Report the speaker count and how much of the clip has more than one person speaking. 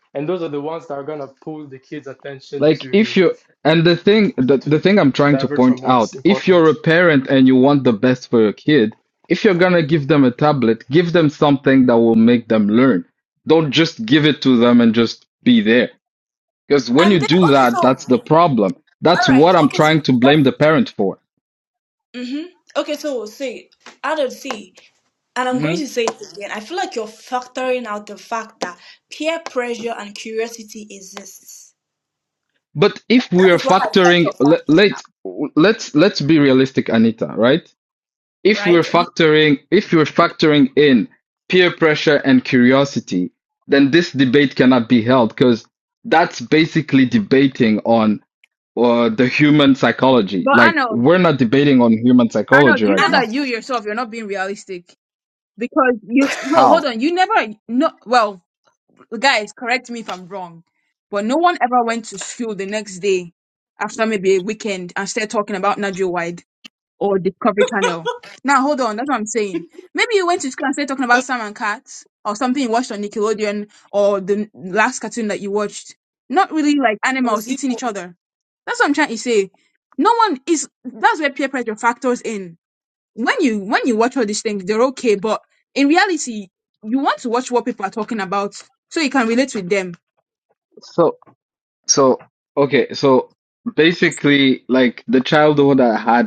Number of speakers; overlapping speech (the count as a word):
four, about 10%